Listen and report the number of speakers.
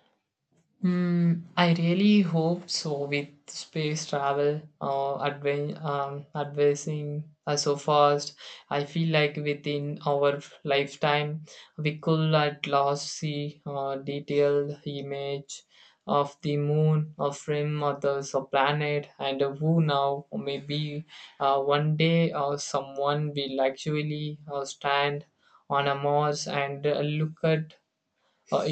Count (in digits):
1